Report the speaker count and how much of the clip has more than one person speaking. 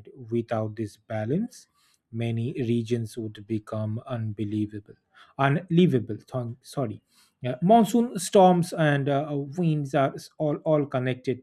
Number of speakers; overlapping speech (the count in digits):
1, no overlap